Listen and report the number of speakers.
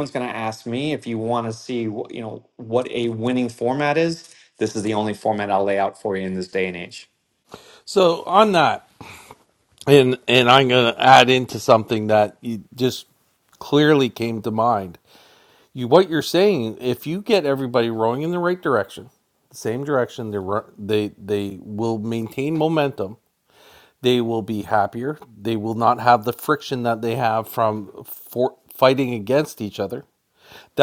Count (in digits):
2